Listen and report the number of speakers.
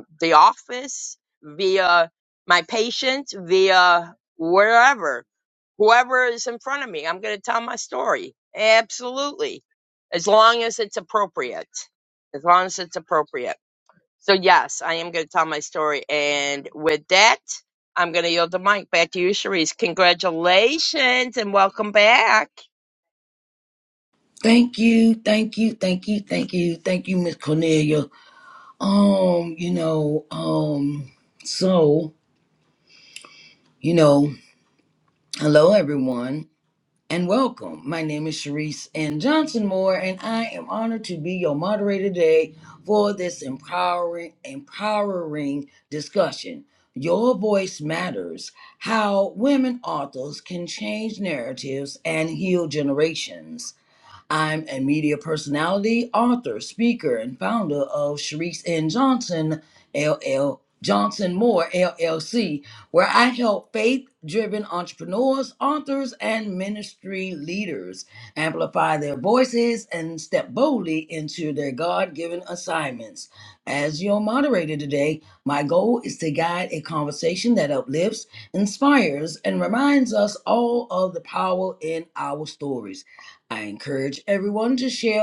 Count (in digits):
2